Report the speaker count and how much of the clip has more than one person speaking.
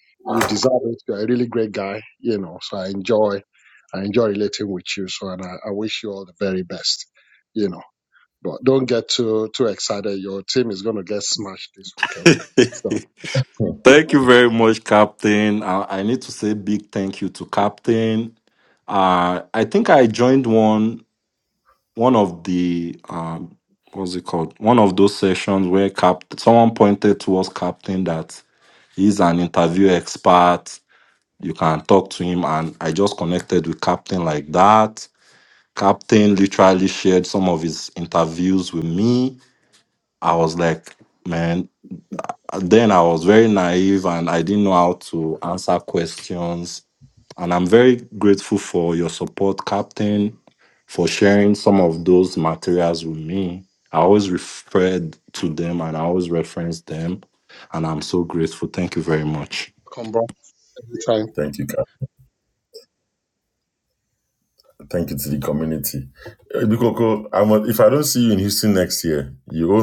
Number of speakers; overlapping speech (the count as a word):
three, no overlap